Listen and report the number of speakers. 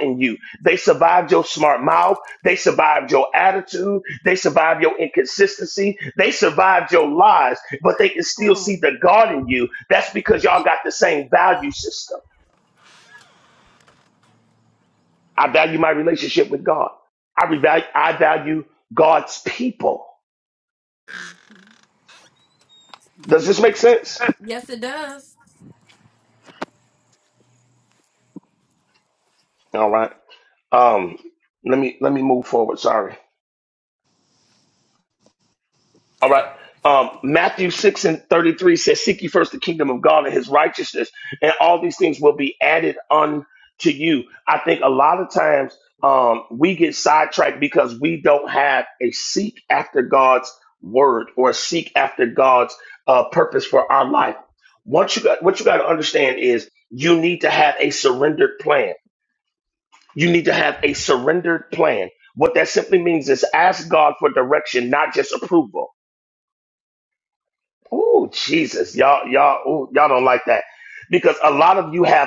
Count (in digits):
2